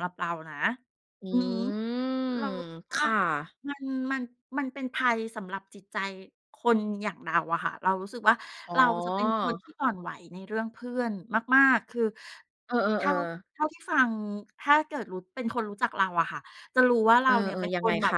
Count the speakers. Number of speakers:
2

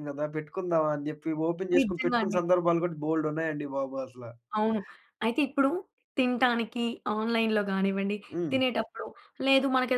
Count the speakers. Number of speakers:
2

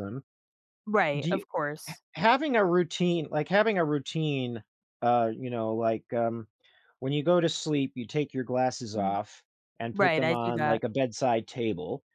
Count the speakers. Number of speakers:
2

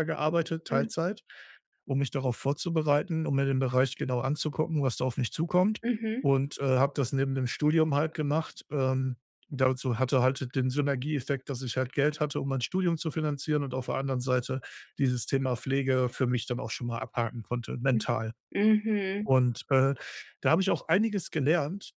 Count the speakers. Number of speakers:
2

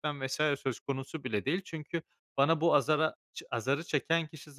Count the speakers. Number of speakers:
1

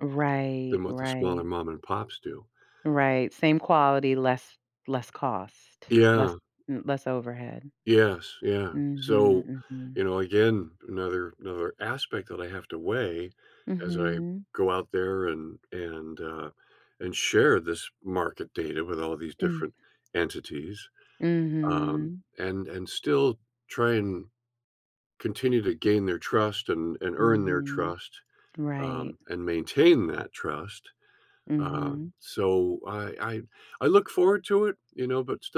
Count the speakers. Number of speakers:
2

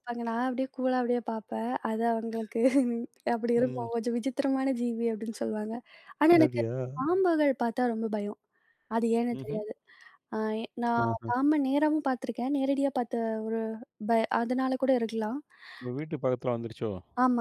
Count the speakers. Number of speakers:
2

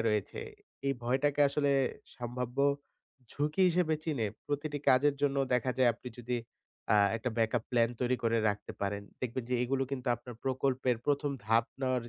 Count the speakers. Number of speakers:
1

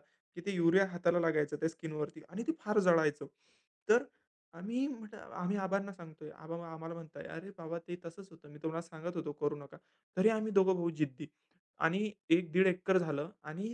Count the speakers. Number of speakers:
1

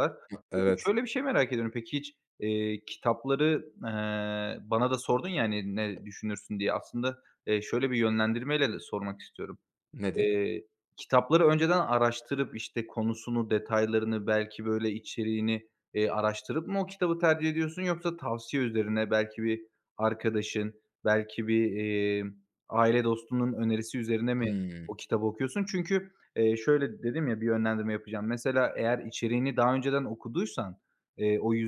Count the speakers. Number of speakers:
2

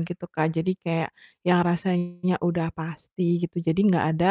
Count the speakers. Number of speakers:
1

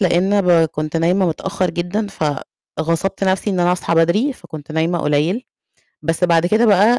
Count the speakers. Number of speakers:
1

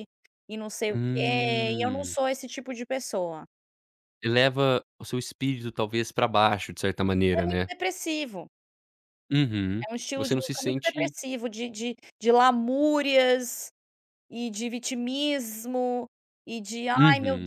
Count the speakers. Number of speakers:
2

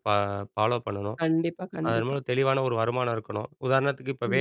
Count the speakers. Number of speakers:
2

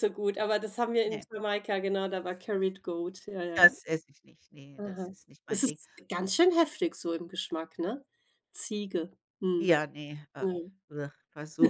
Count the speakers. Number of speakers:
2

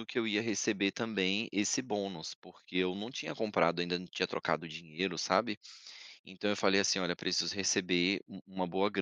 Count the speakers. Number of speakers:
1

